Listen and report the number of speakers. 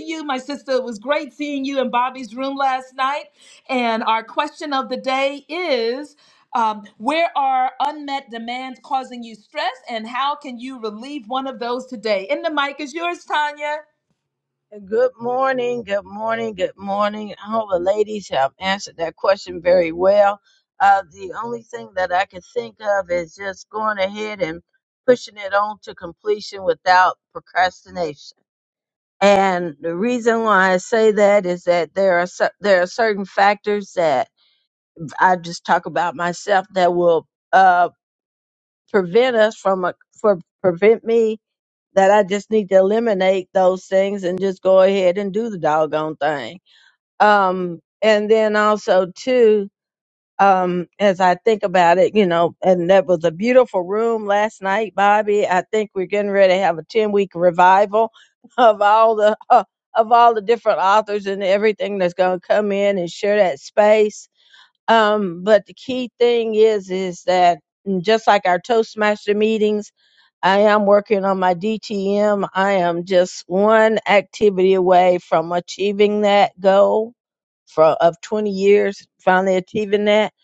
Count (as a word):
two